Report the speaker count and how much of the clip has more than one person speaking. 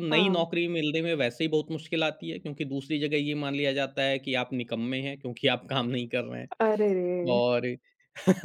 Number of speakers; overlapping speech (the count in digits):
2, about 5%